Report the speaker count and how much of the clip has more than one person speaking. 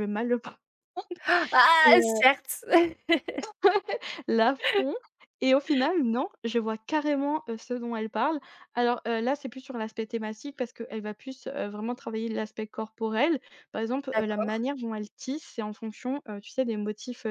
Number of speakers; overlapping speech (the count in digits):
2, about 5%